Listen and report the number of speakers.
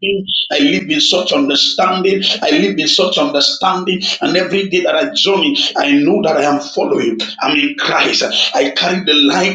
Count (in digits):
1